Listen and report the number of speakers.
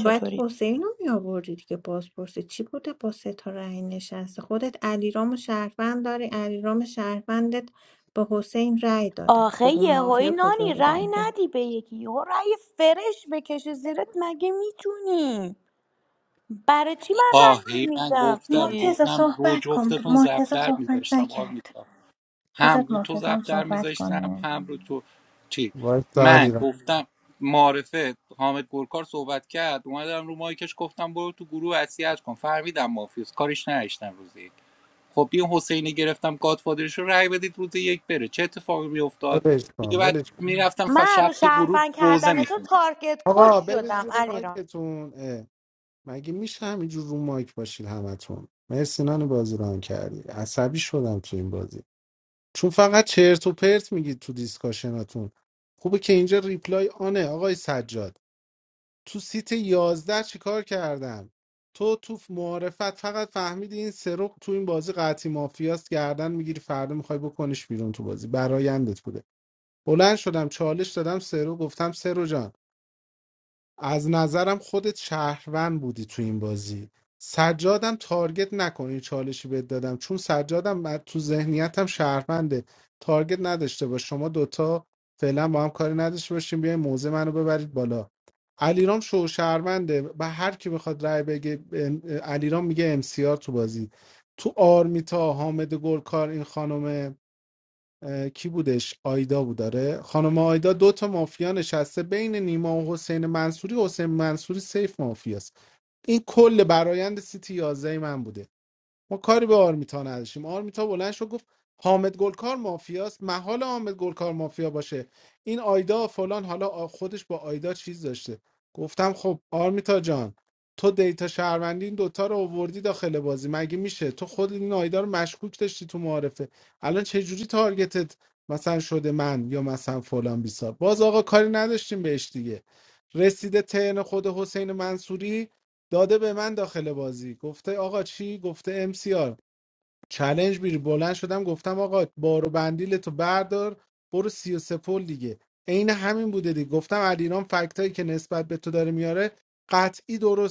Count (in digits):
4